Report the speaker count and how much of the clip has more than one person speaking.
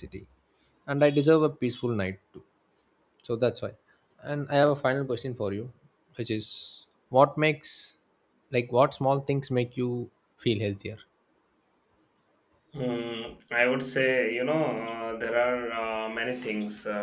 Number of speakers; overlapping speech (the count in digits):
2, no overlap